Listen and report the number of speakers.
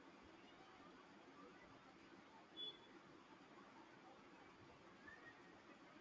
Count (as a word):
zero